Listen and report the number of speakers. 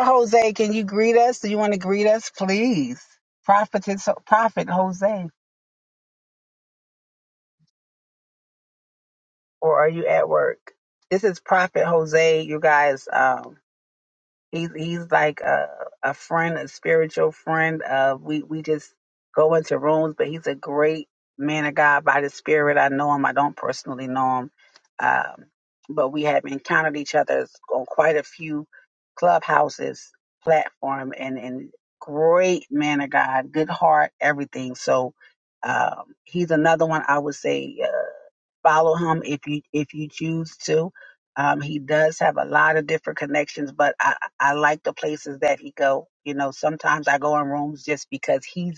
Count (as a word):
one